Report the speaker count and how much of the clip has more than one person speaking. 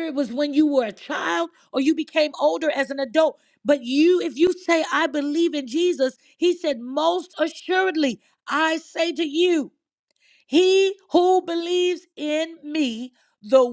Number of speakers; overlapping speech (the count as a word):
one, no overlap